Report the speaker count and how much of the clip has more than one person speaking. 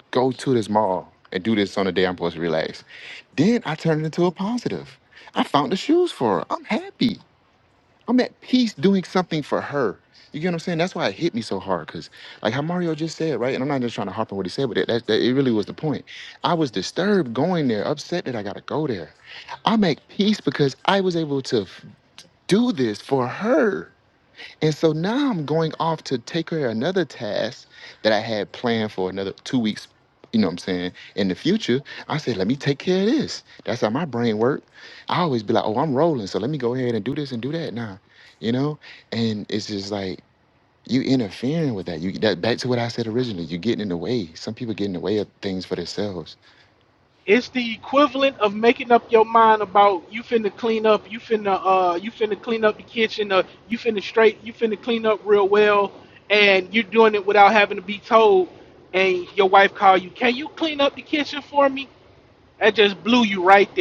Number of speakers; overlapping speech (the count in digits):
2, no overlap